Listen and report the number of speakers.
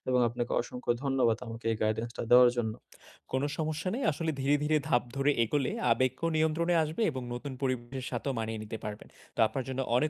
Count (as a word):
two